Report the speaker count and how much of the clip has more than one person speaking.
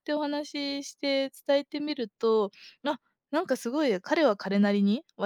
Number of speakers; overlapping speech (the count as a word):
one, no overlap